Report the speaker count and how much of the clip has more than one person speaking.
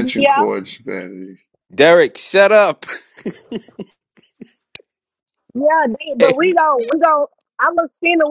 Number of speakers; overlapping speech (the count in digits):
3, about 10%